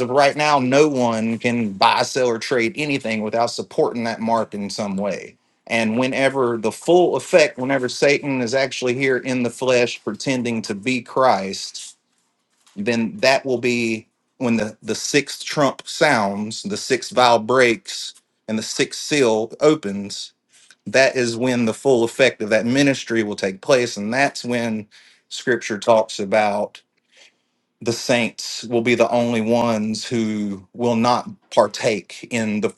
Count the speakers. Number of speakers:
1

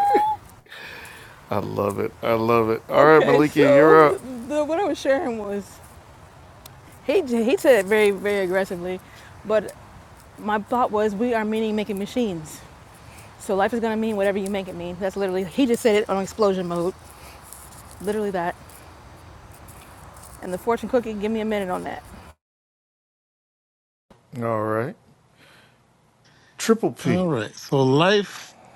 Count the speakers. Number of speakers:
3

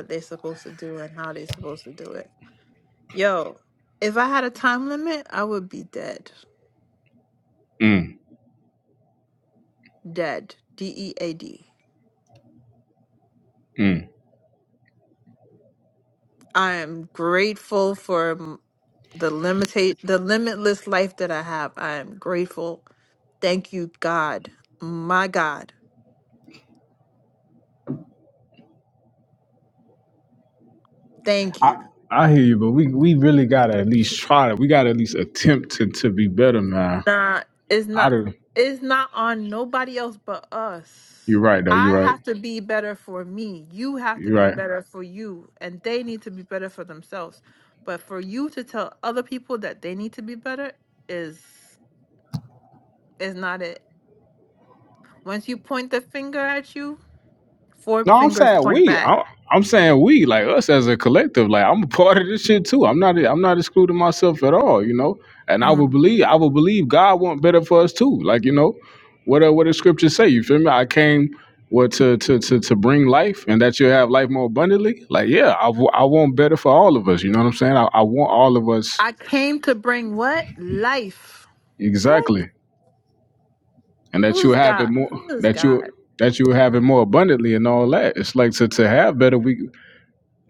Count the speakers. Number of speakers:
2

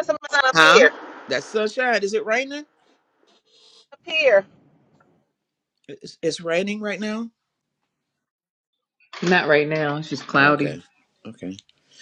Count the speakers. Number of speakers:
3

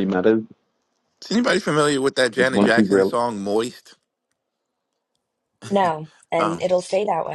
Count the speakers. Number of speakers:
3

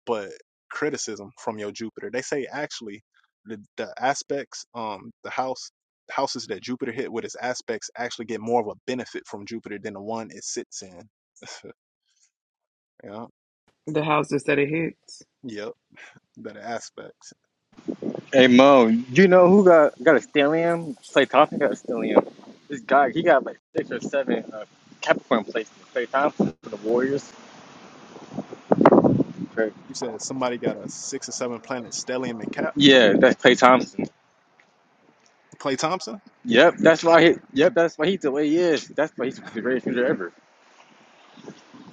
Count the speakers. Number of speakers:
3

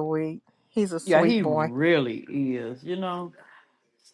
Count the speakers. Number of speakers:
2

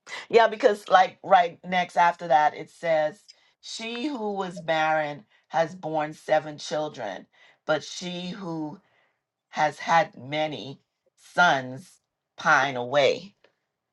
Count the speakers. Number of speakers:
1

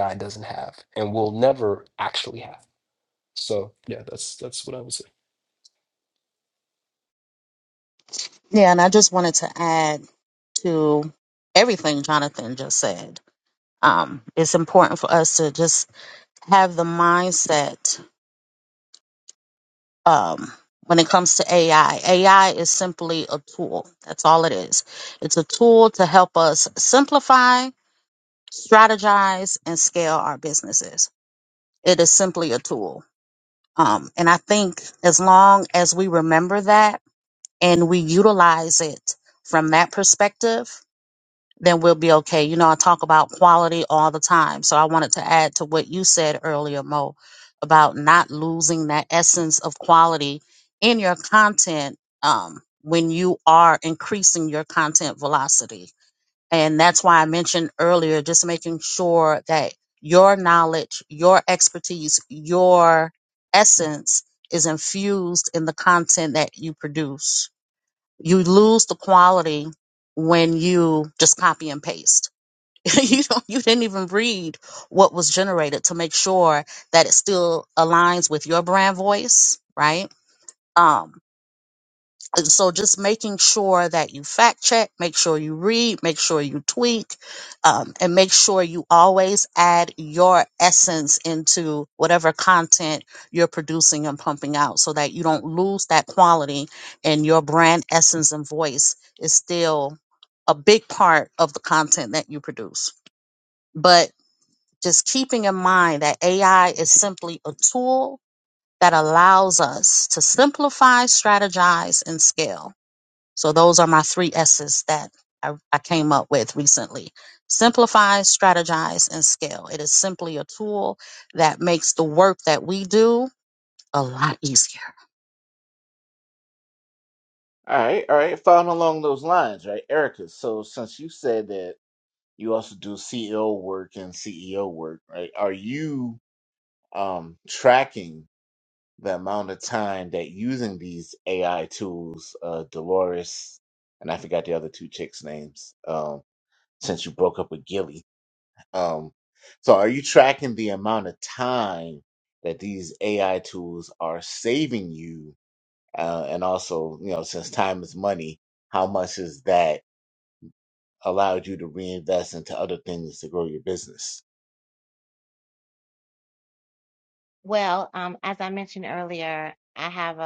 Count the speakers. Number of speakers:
4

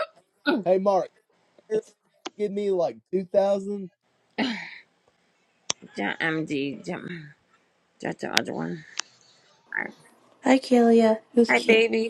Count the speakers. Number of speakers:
3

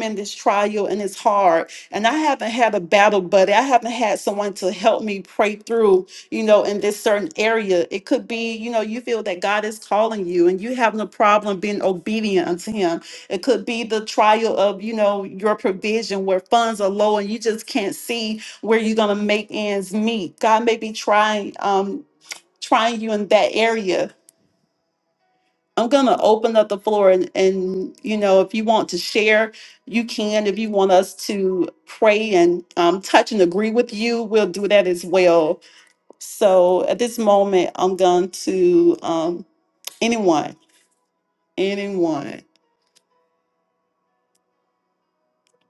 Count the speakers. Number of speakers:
1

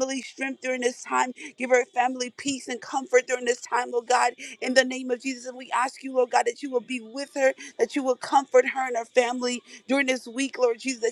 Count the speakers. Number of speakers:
1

